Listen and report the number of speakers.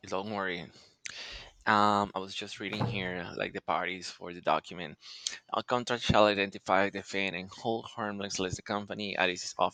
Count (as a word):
one